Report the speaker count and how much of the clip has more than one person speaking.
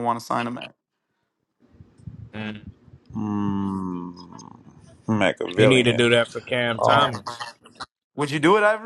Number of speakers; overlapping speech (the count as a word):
three, about 10%